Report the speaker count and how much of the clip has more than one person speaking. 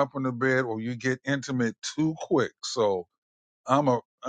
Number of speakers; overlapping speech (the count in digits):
1, no overlap